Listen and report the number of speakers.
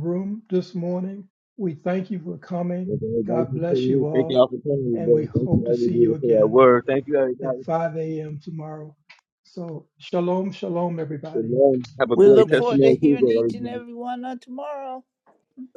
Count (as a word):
three